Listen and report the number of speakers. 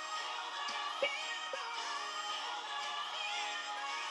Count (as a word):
zero